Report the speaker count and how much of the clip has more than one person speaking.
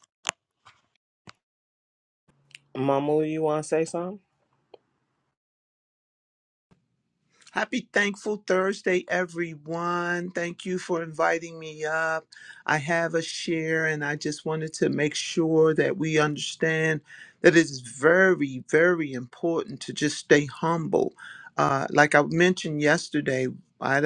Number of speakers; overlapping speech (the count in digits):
2, no overlap